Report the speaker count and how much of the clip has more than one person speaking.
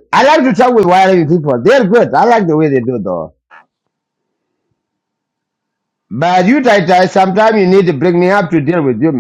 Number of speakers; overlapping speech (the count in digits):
1, no overlap